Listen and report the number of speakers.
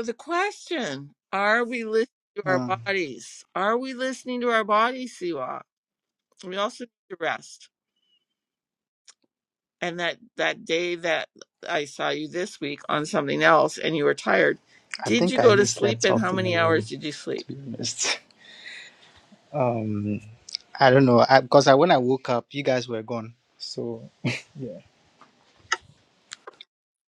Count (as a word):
two